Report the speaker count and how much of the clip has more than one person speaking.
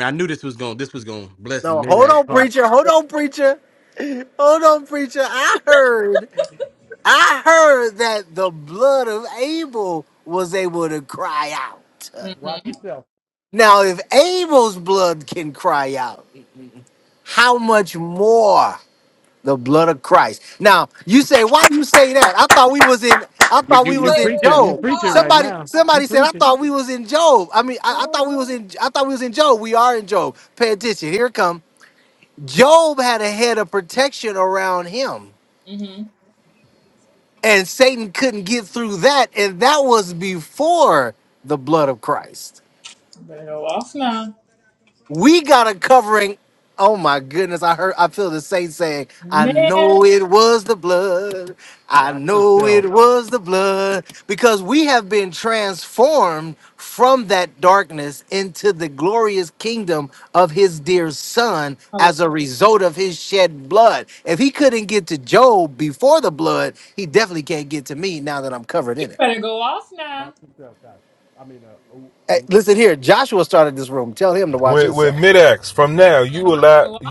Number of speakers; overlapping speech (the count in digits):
4, about 9%